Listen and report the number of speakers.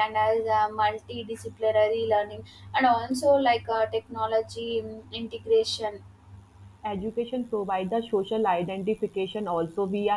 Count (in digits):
2